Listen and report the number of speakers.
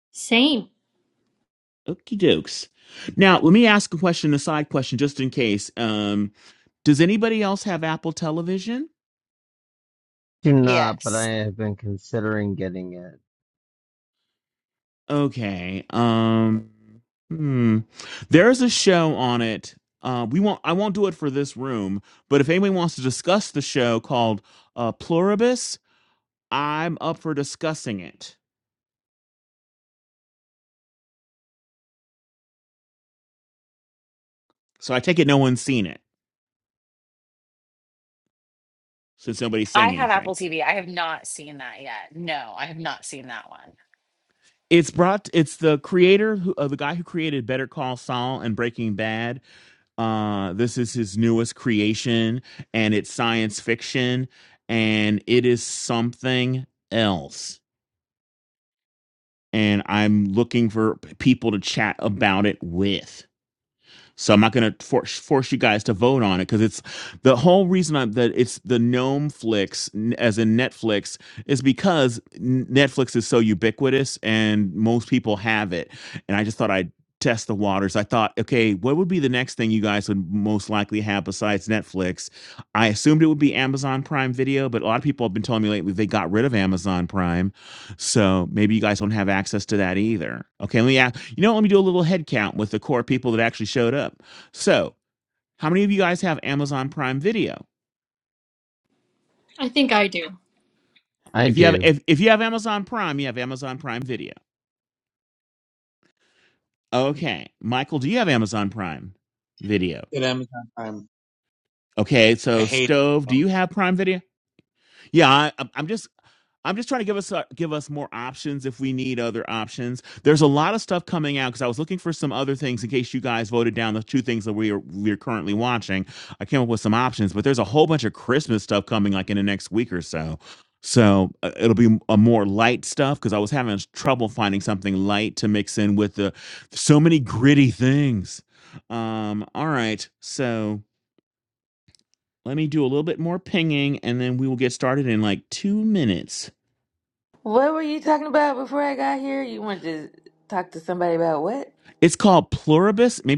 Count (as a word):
six